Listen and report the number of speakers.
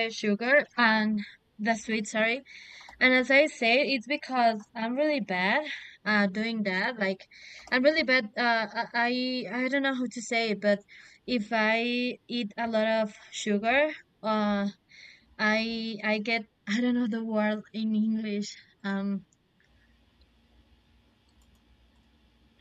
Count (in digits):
1